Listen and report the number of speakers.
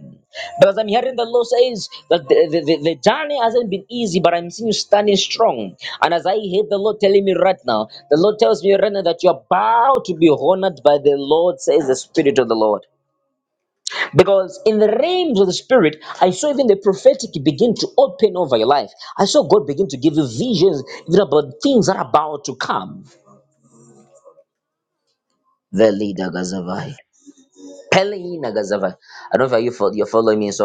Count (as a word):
one